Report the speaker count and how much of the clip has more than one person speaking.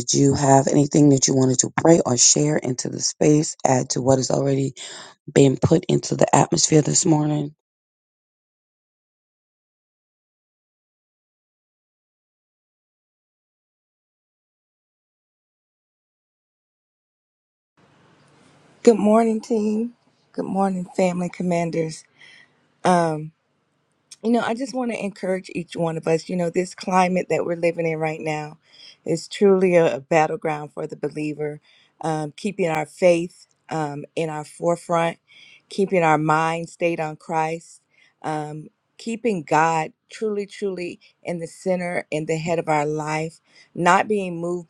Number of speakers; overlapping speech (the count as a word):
two, no overlap